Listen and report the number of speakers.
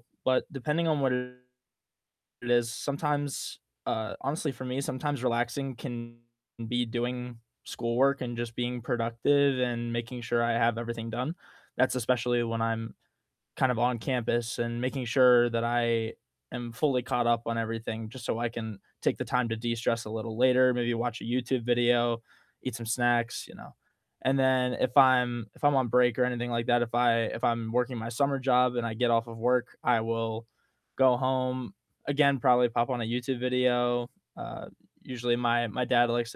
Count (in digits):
1